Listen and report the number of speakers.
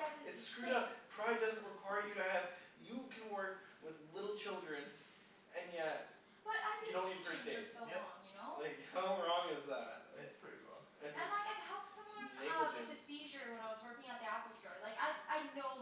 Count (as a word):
three